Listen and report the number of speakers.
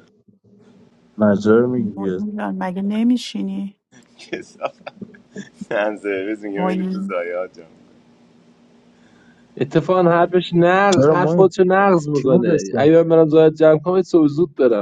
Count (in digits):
4